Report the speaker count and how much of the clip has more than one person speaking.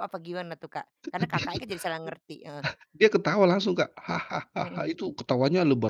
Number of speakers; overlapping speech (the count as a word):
two, about 3%